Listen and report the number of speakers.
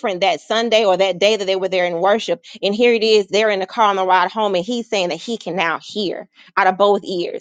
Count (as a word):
one